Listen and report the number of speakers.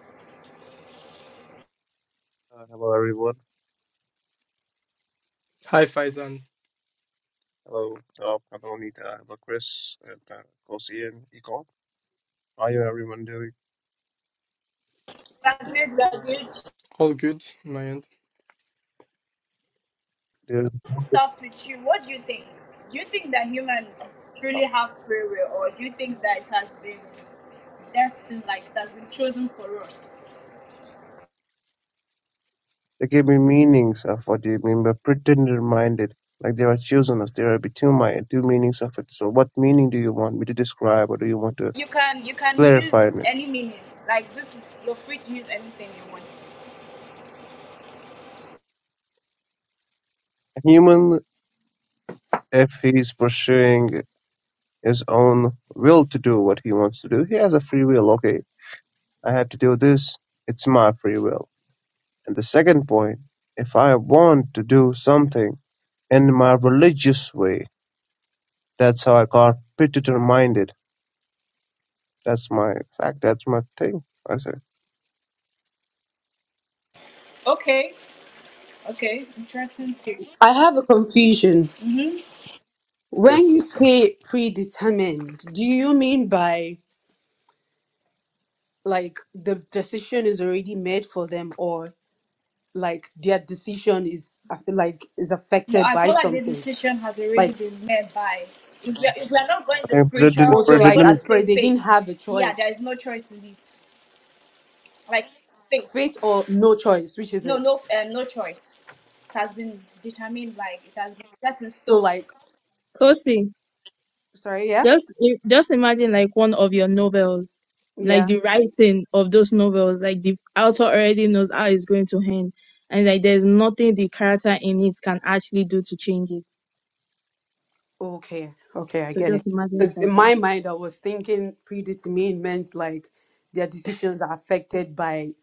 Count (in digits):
5